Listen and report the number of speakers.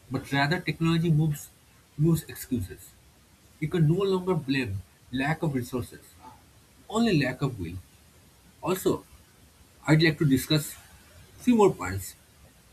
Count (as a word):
one